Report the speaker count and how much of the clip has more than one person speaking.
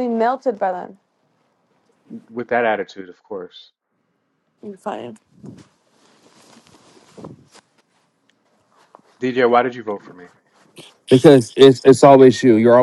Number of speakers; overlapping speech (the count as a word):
three, no overlap